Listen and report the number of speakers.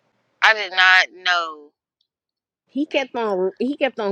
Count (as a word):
two